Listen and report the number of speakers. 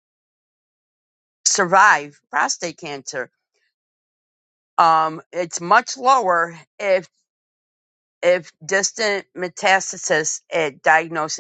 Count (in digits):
1